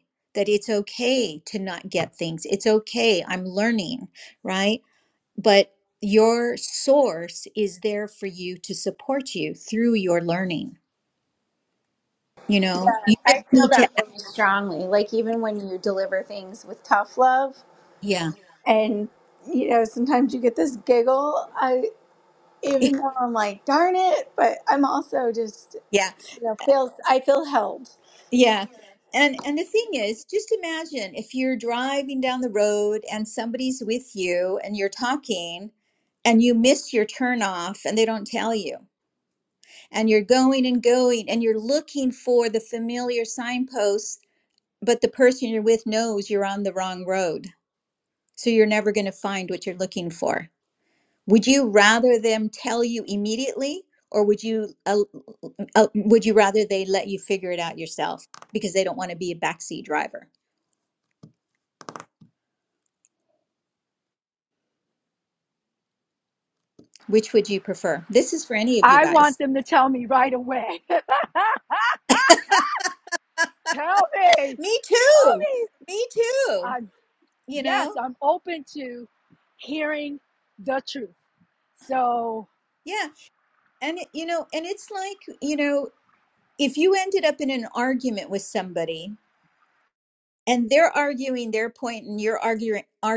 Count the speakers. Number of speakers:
3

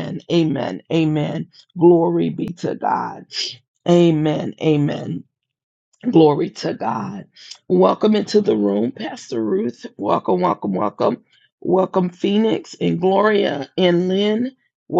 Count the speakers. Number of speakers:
1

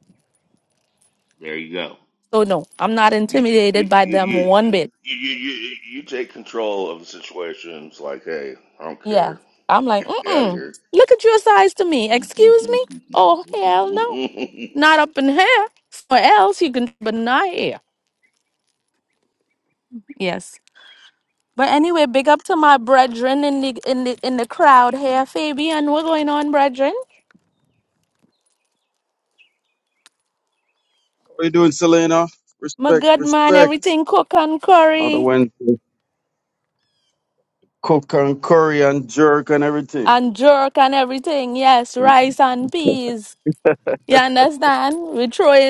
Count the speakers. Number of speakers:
3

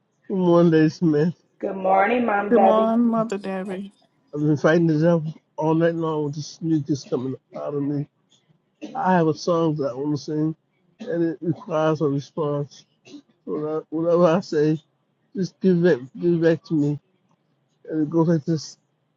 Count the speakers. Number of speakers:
3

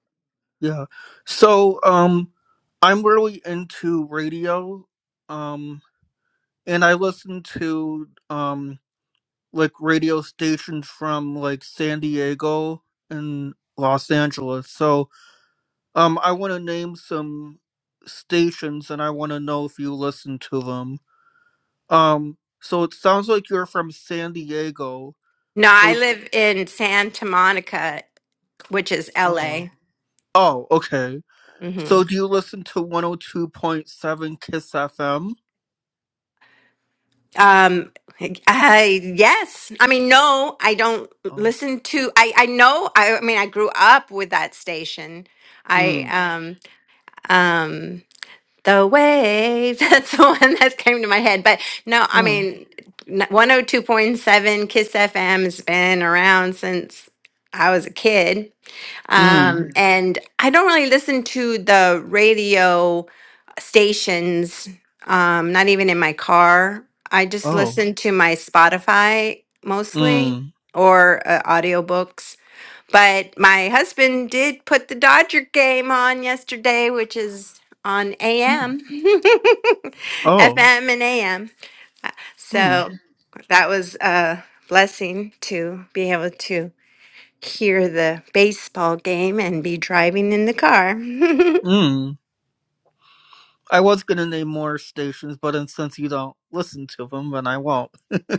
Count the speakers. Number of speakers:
2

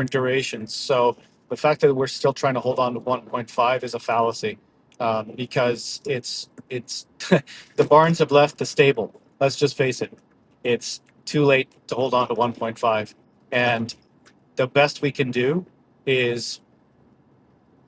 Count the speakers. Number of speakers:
1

